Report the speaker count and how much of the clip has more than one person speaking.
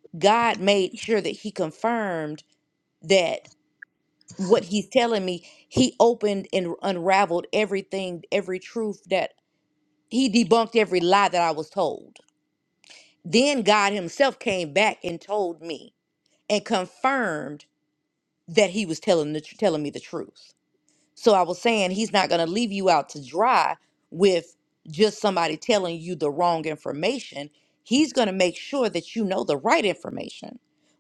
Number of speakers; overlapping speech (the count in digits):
1, no overlap